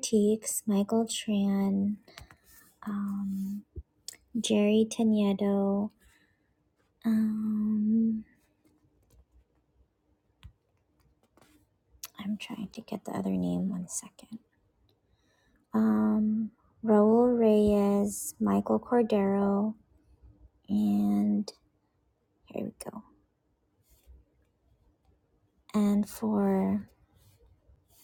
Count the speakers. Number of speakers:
one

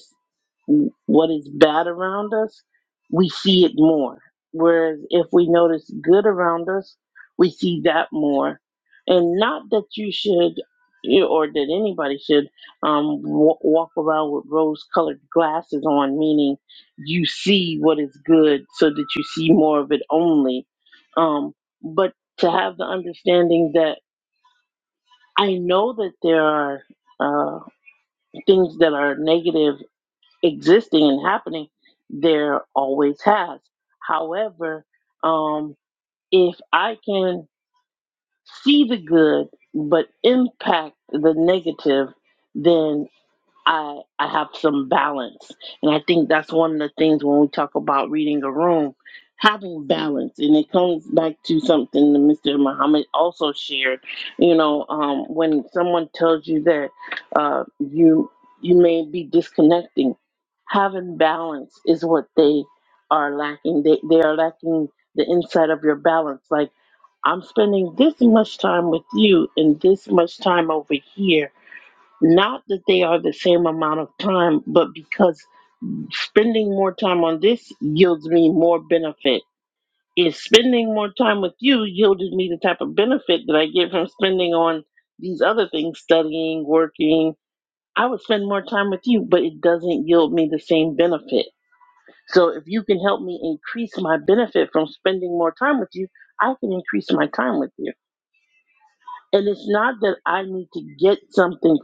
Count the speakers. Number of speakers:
one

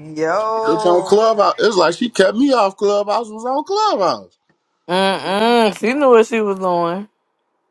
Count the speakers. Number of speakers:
three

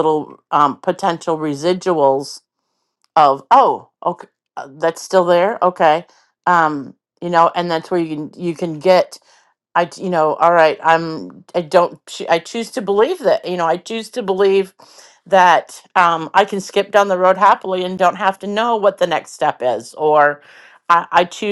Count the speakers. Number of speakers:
one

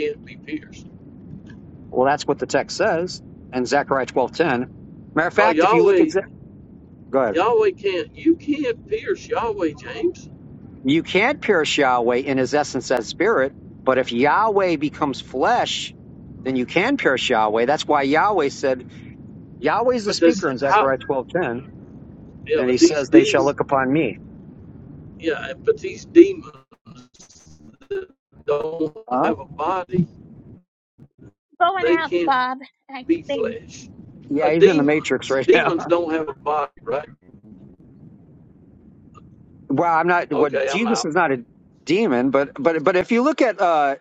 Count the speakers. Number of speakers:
three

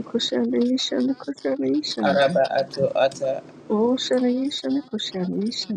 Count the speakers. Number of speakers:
two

